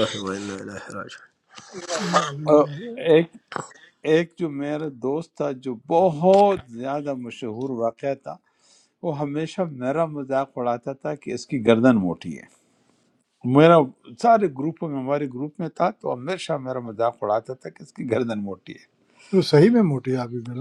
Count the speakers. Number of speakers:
3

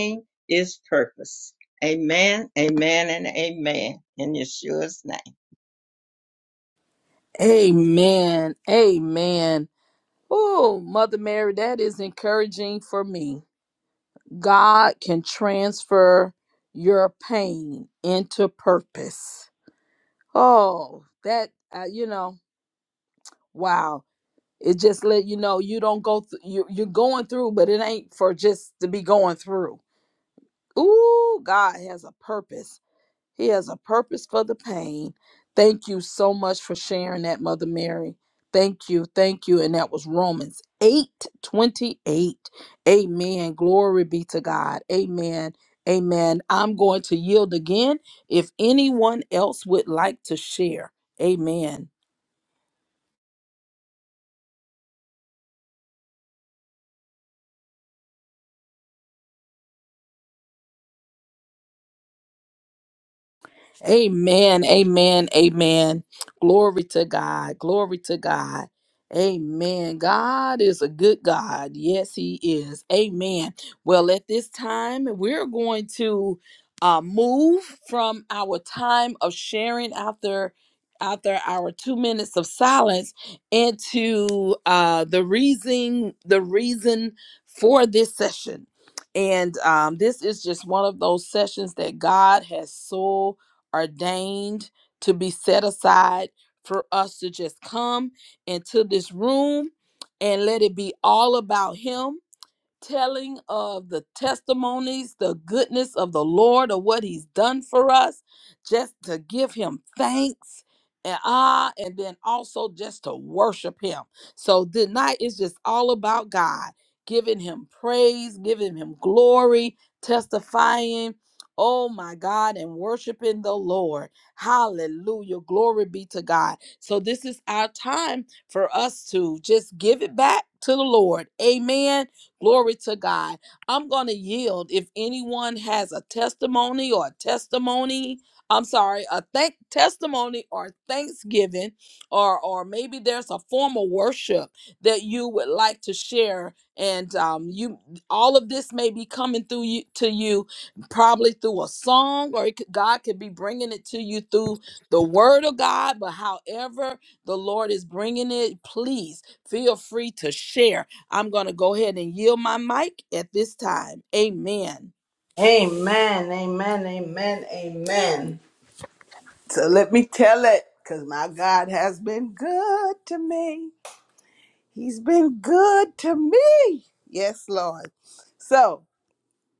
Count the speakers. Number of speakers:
3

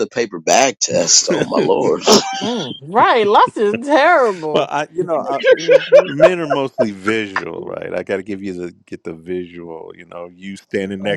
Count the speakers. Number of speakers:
3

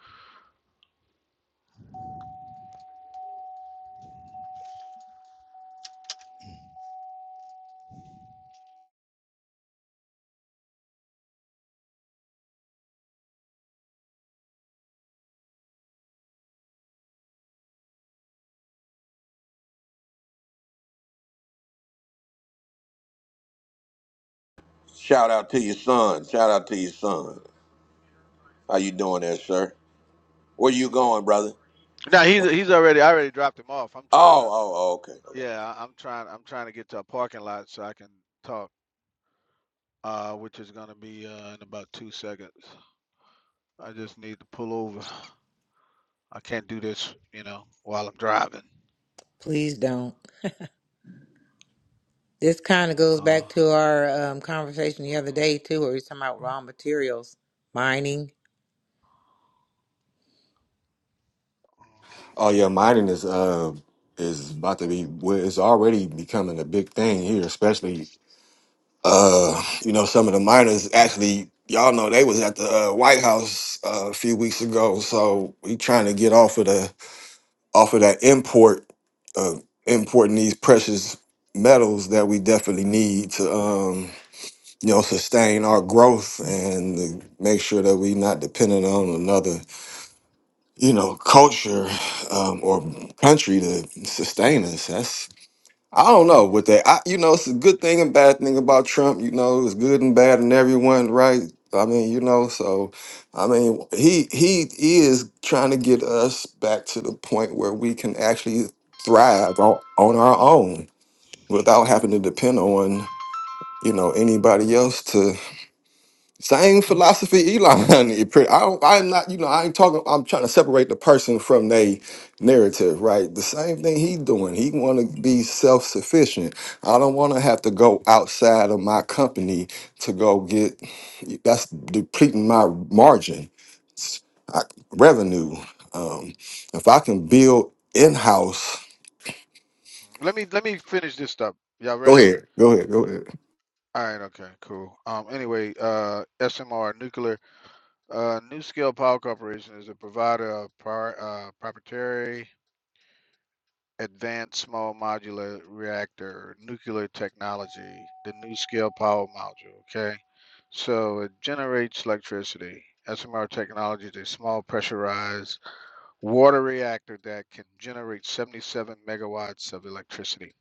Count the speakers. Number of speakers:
4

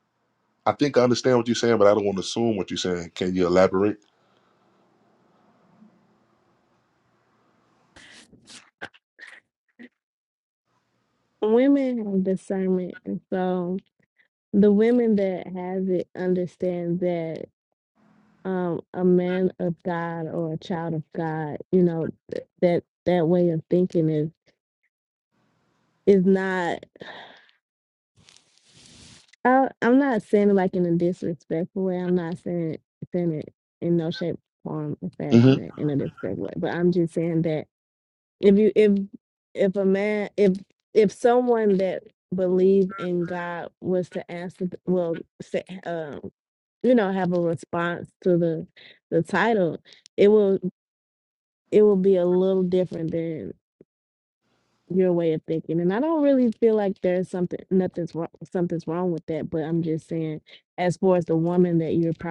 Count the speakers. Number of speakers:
2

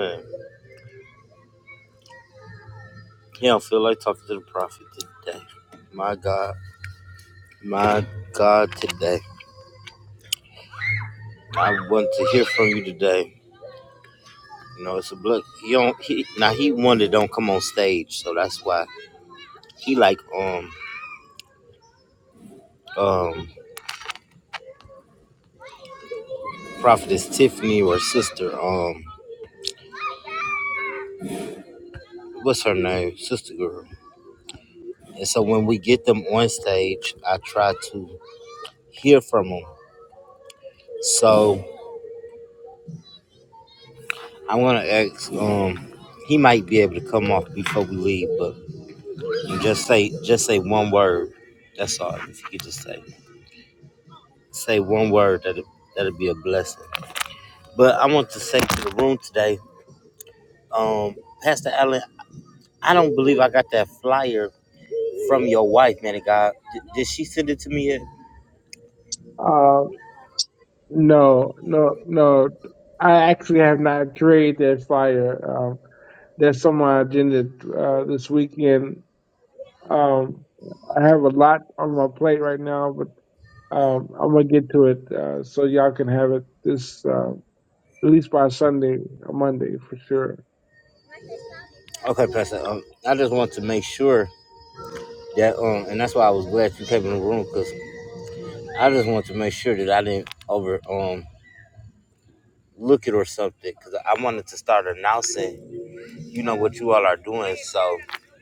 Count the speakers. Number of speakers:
2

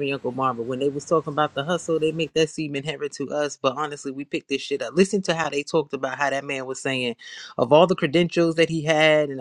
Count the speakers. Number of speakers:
1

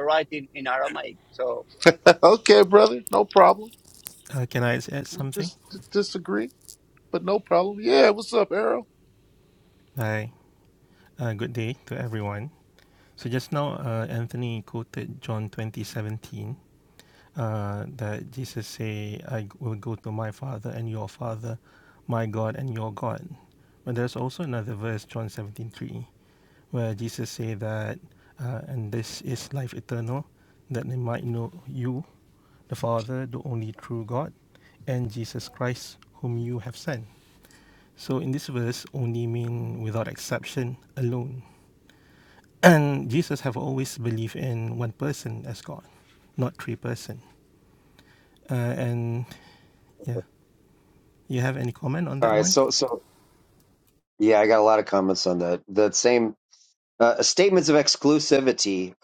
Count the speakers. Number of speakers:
4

